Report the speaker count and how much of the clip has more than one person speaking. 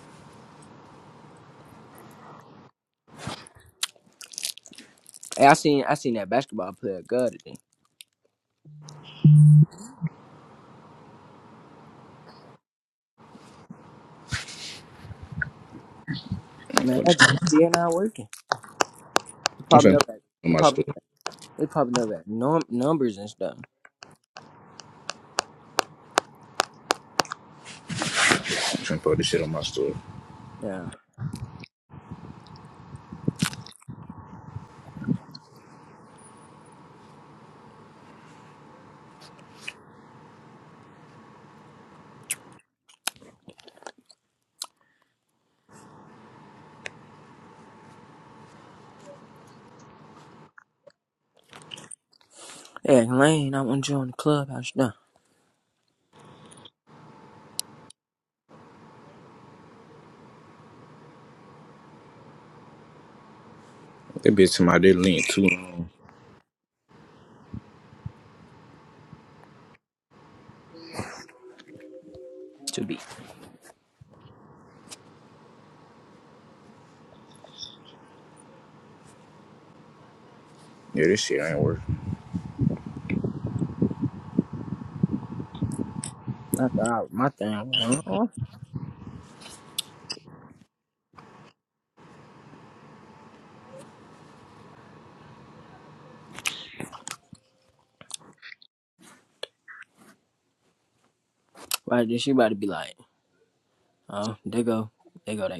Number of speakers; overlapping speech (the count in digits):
2, about 2%